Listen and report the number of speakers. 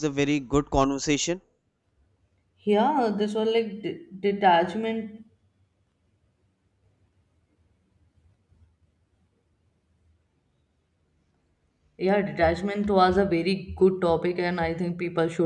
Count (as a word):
two